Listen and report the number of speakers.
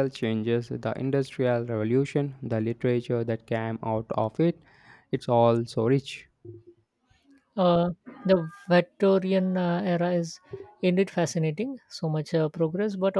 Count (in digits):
2